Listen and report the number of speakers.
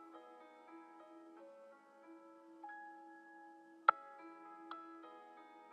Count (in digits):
0